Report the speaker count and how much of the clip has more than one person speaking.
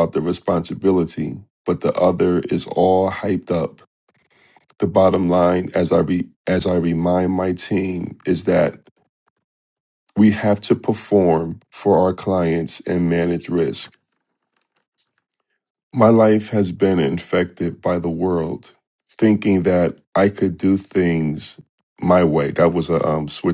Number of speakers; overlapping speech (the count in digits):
1, no overlap